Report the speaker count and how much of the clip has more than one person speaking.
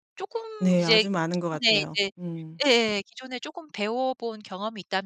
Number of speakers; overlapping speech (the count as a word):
two, about 27%